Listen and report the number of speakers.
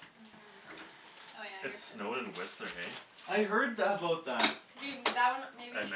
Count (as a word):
three